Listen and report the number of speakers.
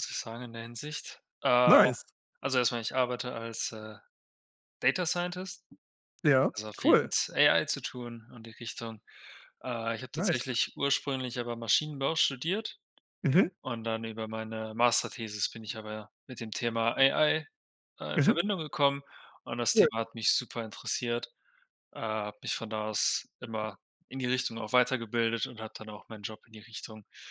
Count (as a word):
two